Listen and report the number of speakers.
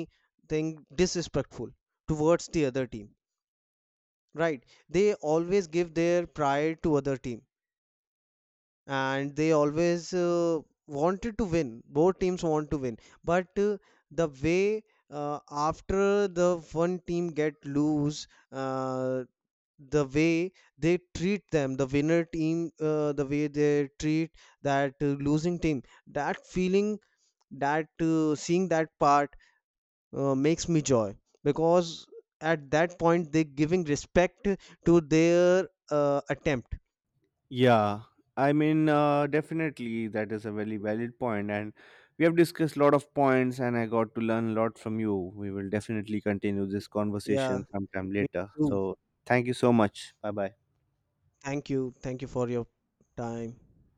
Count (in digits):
2